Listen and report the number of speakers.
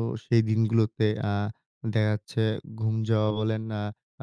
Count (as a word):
one